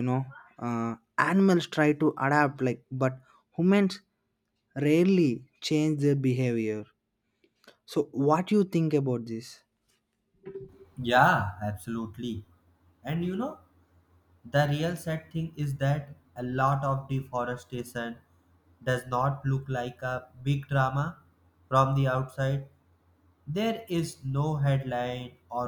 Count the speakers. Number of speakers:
2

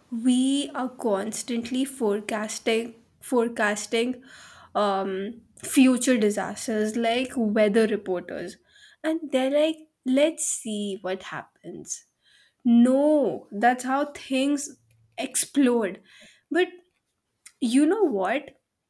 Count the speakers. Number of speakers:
1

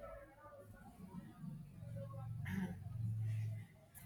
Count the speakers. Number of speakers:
0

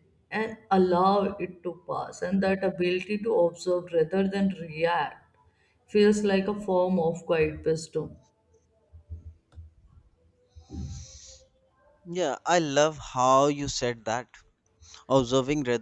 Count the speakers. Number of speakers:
2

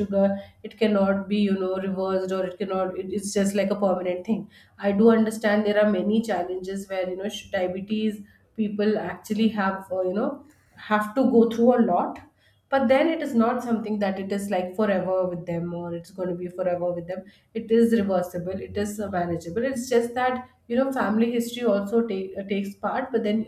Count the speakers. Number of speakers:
1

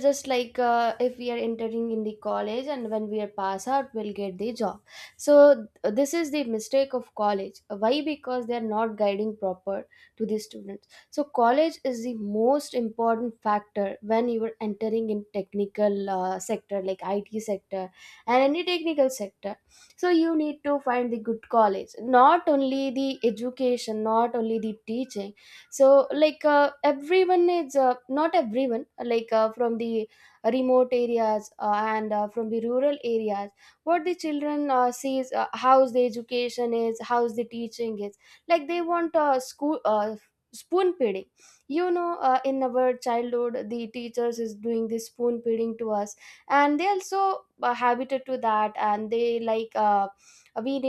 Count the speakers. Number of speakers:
1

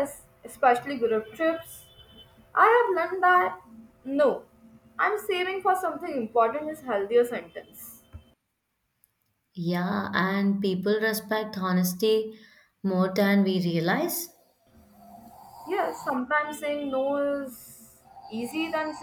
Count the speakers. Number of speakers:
2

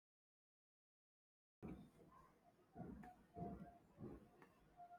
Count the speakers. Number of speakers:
0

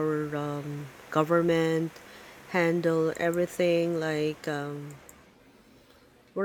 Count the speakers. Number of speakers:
1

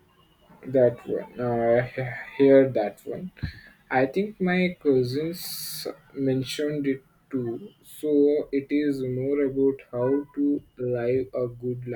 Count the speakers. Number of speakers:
1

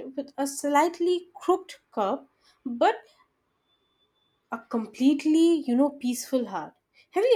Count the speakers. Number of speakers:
1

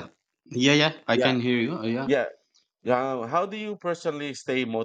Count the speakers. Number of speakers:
2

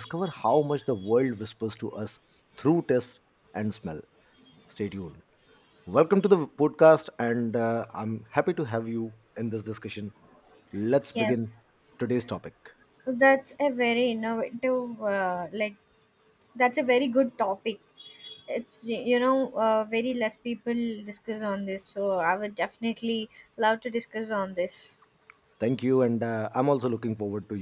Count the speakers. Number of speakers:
2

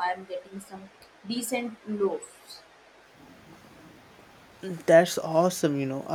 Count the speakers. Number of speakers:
2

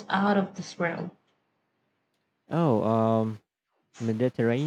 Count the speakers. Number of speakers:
2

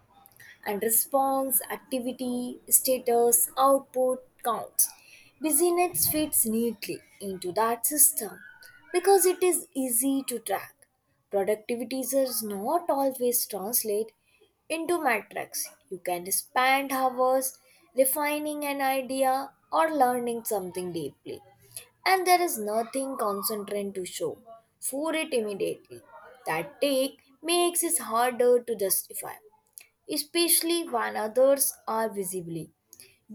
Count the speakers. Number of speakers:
1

